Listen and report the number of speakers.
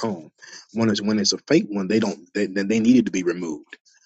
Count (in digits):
1